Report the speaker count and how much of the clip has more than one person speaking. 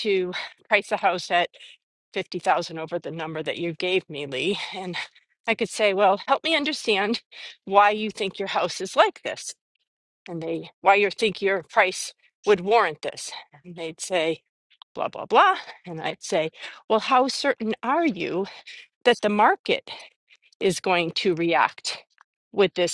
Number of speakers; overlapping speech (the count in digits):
1, no overlap